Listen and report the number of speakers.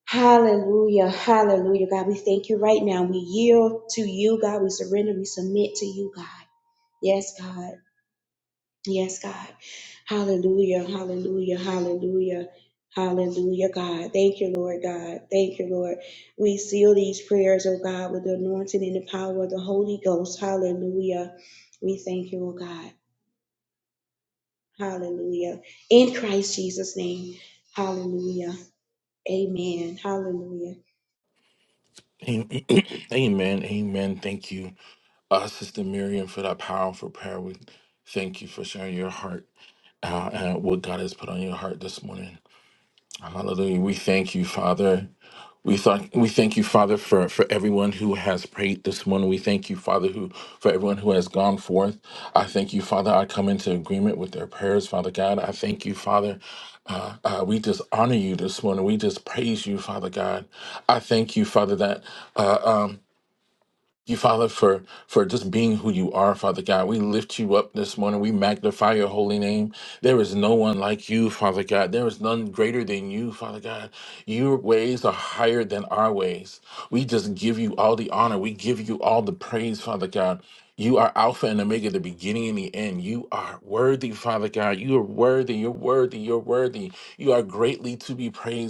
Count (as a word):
two